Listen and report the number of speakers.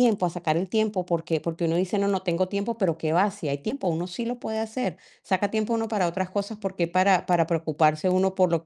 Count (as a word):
one